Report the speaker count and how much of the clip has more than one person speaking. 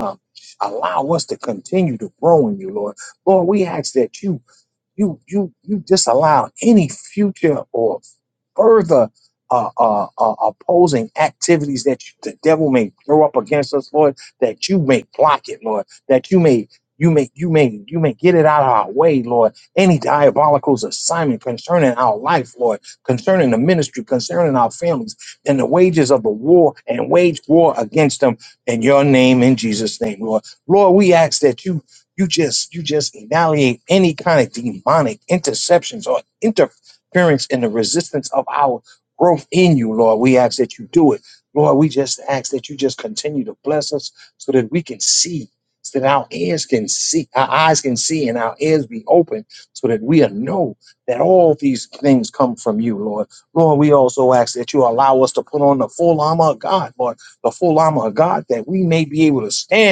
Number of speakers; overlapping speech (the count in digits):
1, no overlap